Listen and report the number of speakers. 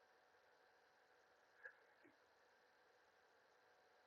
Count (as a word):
zero